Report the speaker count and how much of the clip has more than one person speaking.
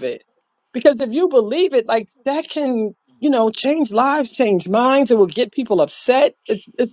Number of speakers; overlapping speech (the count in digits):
1, no overlap